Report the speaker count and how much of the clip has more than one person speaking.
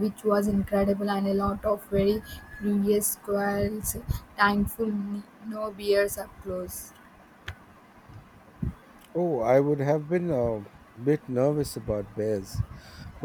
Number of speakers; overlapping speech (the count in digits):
2, no overlap